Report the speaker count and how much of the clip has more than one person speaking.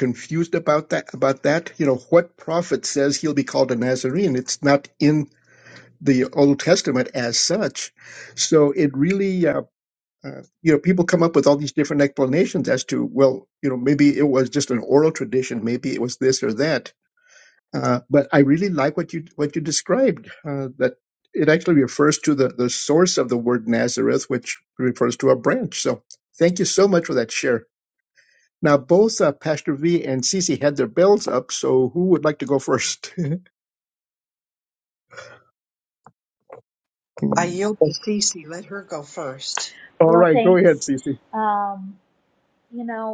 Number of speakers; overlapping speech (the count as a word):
three, about 1%